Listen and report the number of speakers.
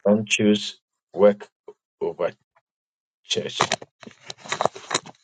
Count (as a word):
one